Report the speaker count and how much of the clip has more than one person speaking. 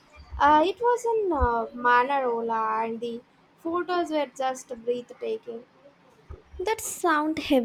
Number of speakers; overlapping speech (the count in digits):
2, no overlap